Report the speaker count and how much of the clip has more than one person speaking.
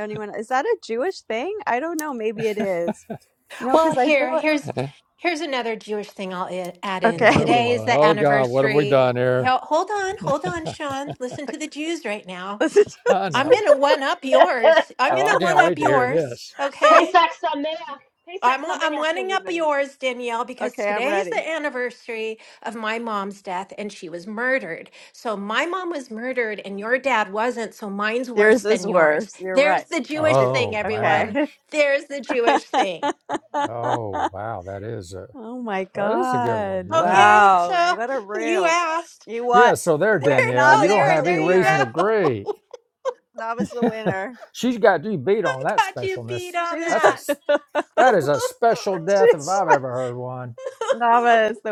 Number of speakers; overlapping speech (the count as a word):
four, about 29%